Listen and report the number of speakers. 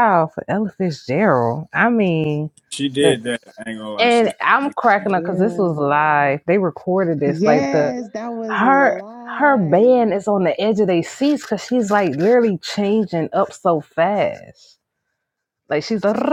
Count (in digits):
3